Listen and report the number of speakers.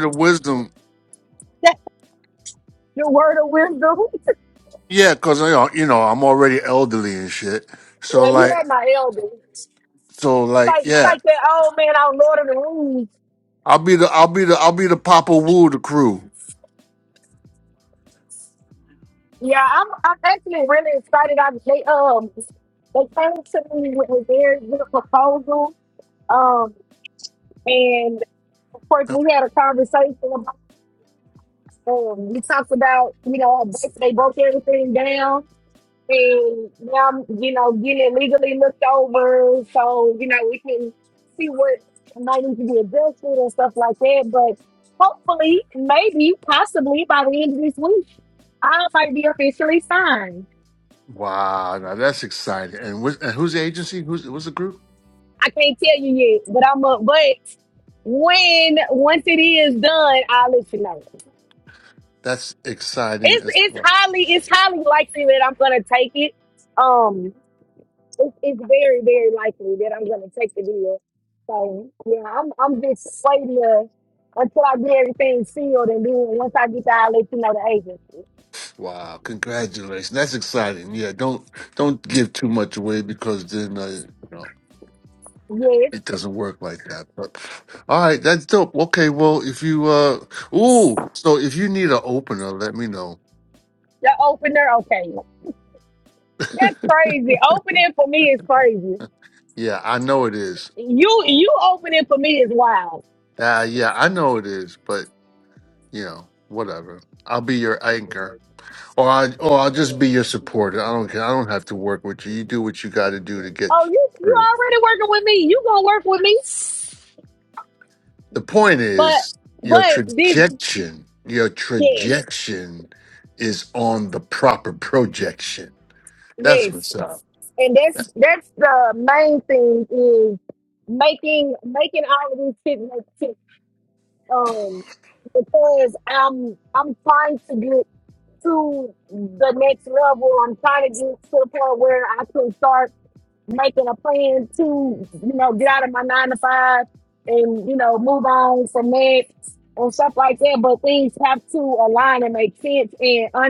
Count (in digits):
2